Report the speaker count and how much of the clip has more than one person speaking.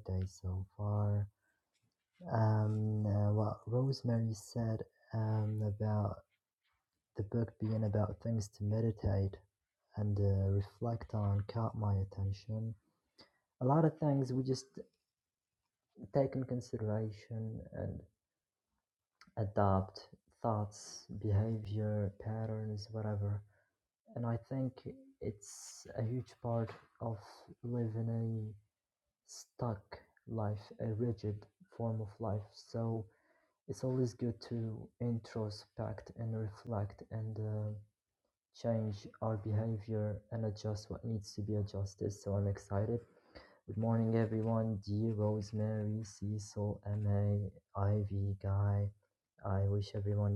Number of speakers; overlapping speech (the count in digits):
1, no overlap